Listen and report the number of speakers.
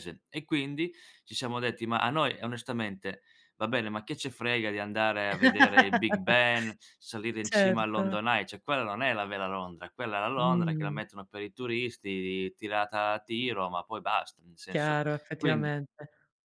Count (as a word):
two